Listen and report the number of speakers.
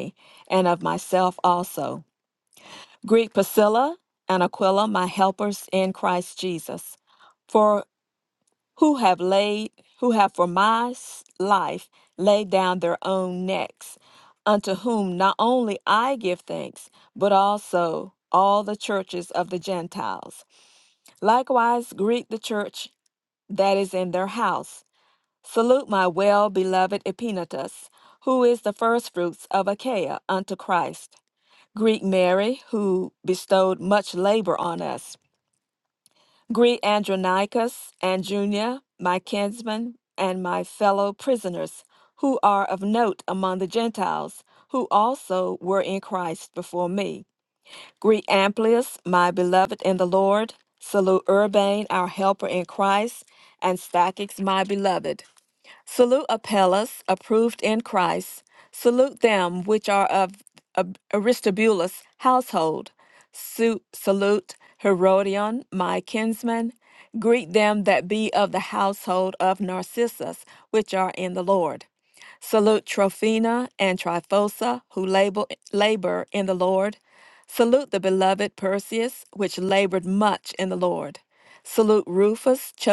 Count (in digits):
1